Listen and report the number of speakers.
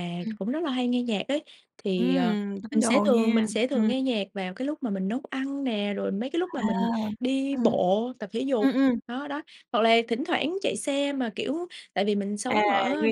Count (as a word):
two